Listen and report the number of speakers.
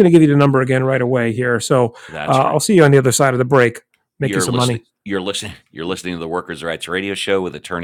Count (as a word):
two